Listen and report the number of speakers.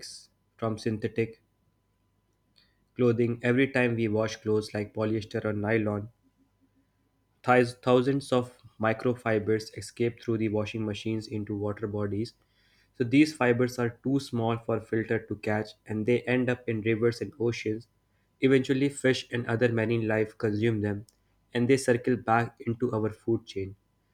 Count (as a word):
one